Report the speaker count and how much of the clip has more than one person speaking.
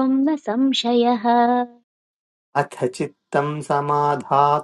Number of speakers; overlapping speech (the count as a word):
two, no overlap